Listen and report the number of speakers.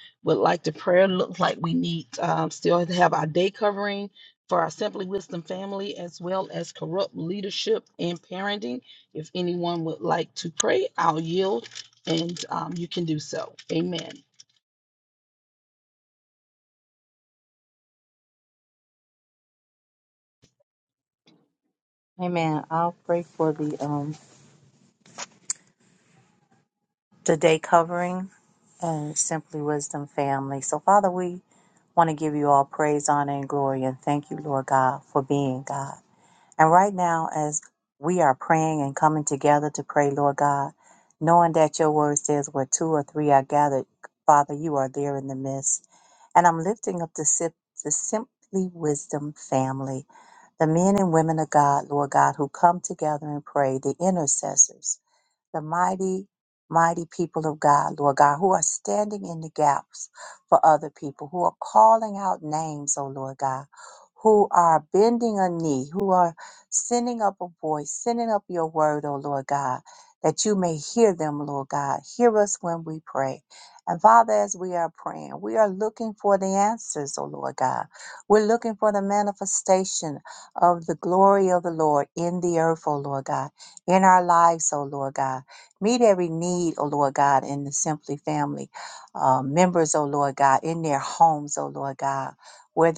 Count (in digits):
2